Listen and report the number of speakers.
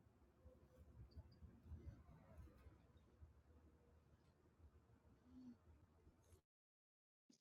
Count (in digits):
0